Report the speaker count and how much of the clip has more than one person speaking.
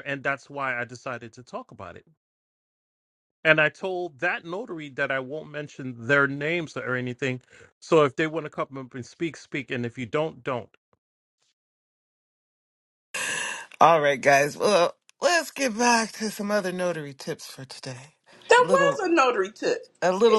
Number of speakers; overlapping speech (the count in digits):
3, about 2%